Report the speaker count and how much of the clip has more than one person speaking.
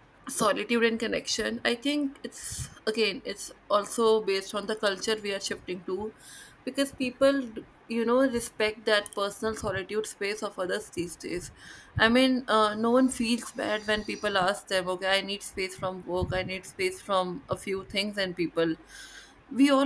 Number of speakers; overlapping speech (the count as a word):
one, no overlap